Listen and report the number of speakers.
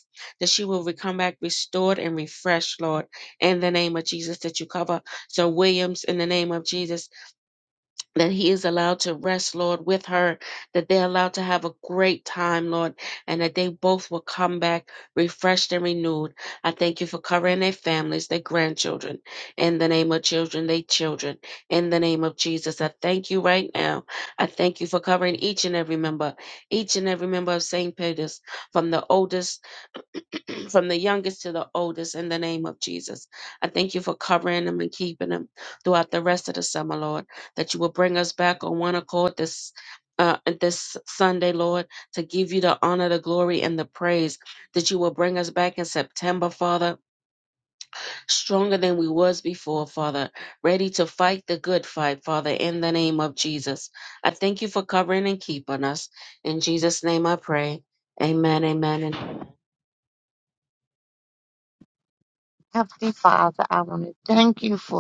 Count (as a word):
two